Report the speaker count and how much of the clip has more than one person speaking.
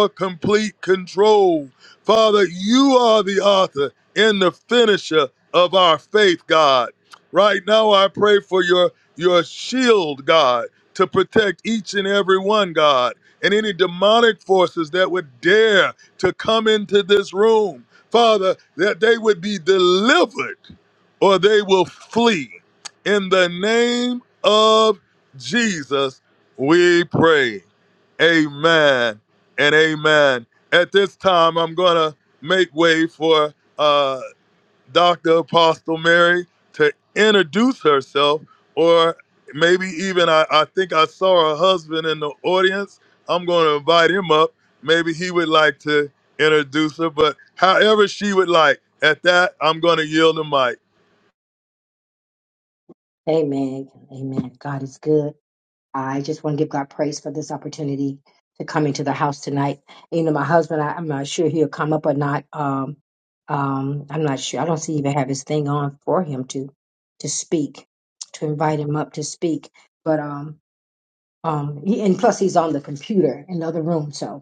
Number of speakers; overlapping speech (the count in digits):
2, no overlap